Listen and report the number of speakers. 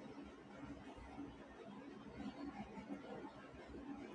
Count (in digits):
0